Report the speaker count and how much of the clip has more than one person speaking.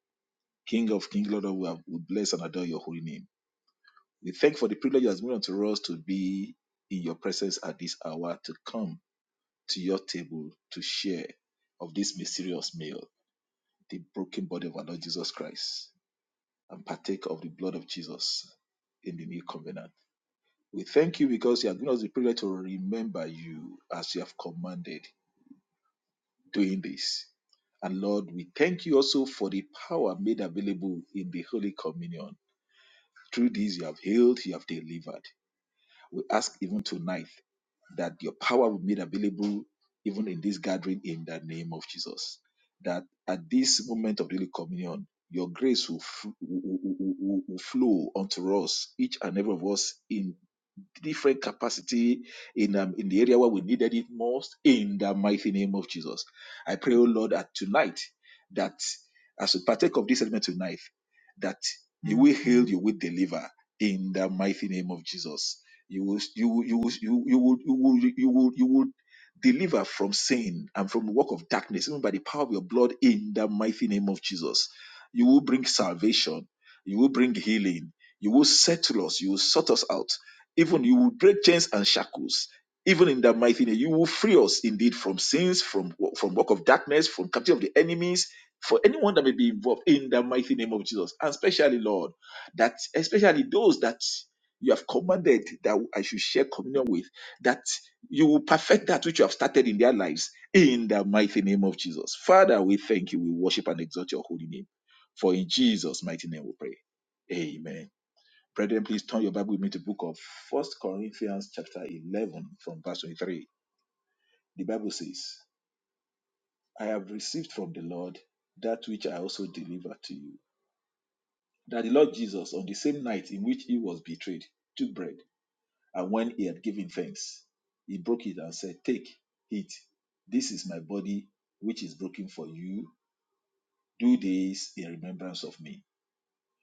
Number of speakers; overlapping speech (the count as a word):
one, no overlap